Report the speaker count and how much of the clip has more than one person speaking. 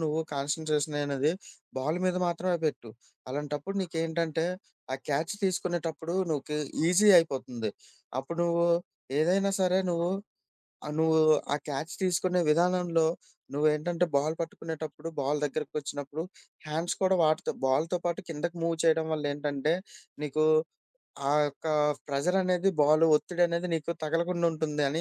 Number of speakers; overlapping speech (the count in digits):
1, no overlap